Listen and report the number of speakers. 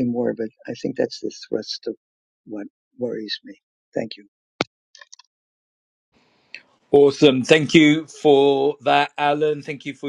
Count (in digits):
2